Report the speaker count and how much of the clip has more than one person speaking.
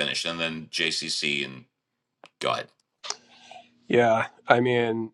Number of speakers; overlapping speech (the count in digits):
2, no overlap